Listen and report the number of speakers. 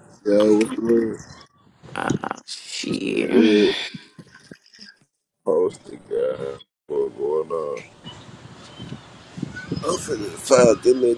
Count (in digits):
3